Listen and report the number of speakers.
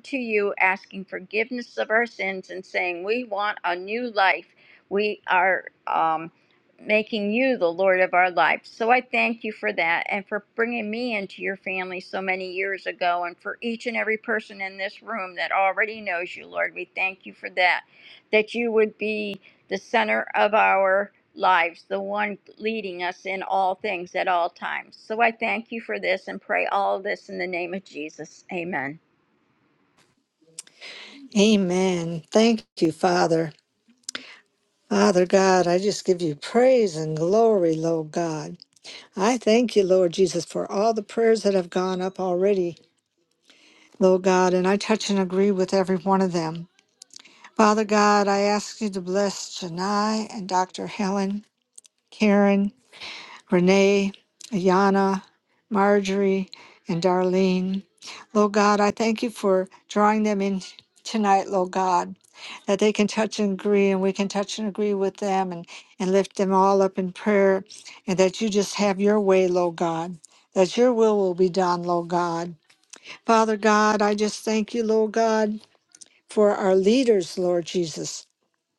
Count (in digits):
2